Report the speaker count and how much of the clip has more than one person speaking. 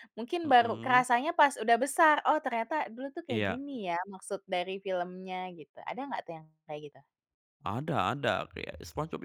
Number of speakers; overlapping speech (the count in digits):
2, about 10%